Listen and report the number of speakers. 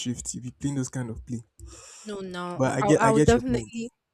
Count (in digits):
2